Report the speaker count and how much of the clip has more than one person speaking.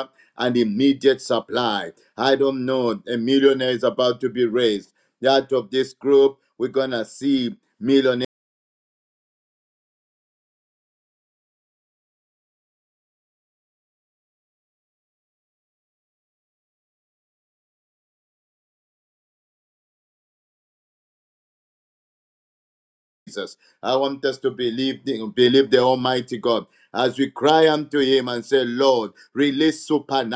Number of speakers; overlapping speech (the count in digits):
1, no overlap